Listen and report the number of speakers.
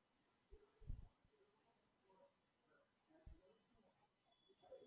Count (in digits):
0